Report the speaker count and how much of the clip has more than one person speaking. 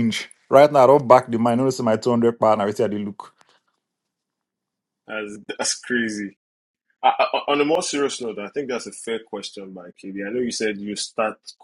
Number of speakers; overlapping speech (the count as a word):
two, no overlap